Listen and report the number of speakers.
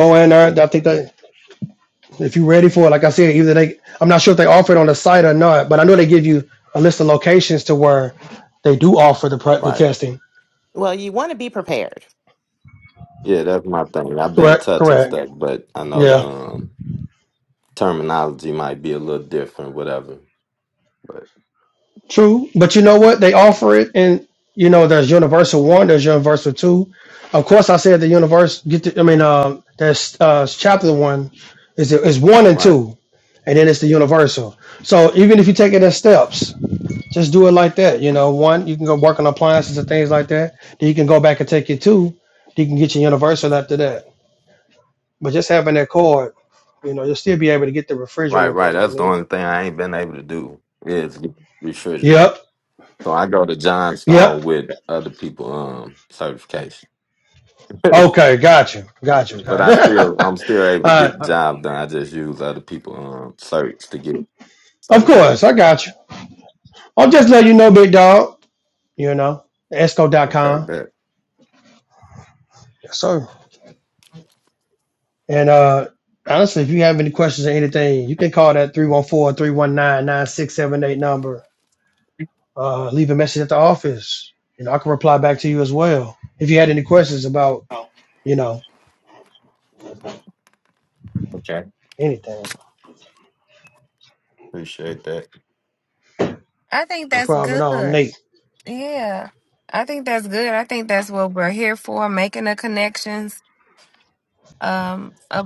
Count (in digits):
4